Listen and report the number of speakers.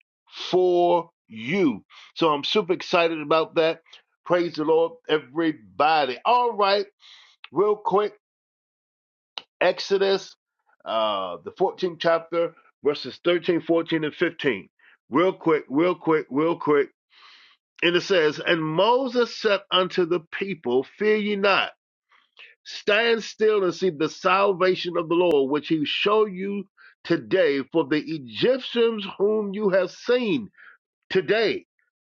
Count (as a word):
one